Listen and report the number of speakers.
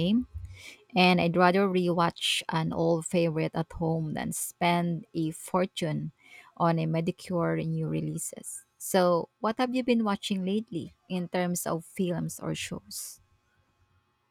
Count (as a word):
one